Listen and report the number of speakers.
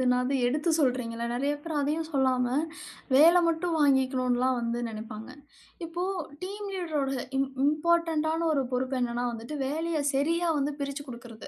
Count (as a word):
one